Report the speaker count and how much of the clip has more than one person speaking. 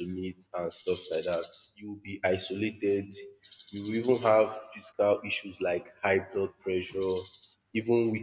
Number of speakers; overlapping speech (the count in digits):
1, no overlap